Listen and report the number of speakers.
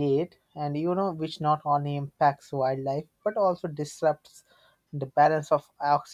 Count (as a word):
one